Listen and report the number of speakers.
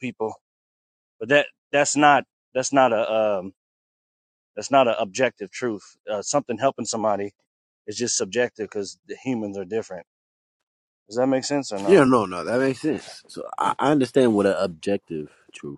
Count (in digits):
2